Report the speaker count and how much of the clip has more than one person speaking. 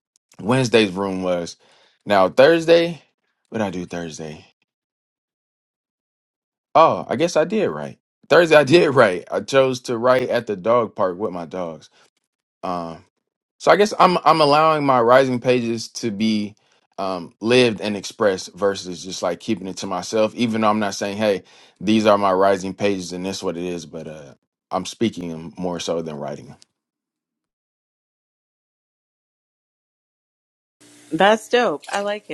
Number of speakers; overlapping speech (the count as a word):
two, no overlap